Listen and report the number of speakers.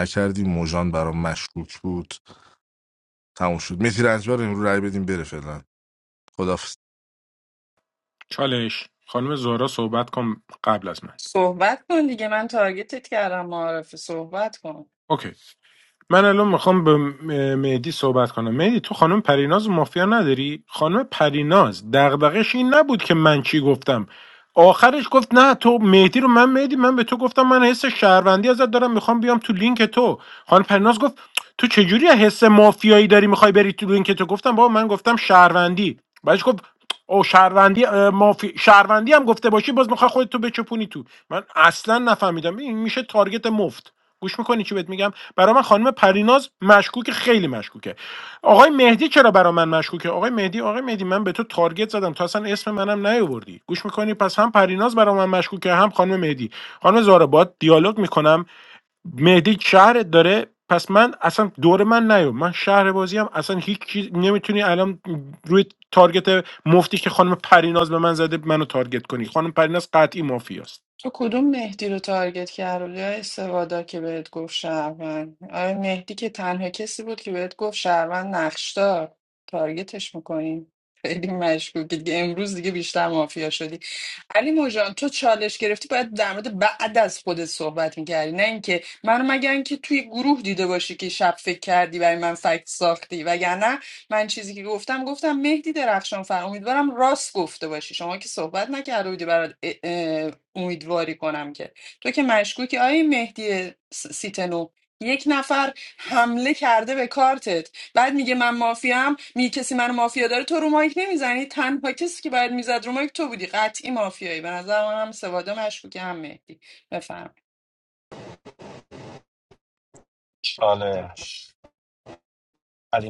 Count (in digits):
4